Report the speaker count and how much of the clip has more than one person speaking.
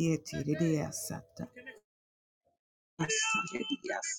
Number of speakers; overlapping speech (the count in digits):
1, no overlap